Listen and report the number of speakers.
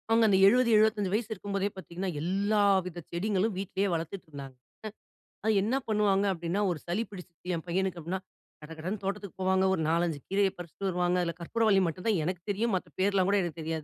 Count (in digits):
1